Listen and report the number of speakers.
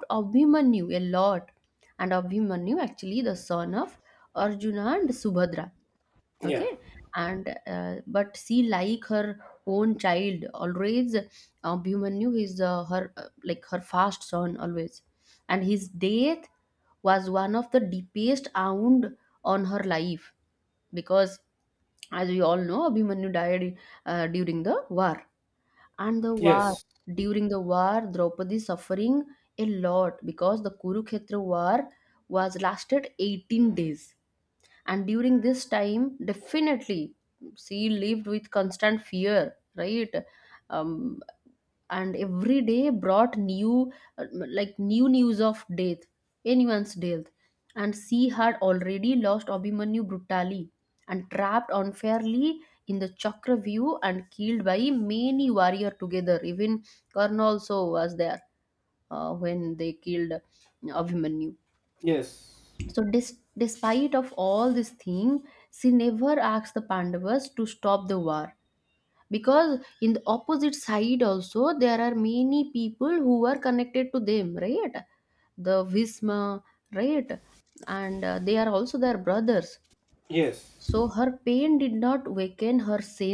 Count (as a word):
two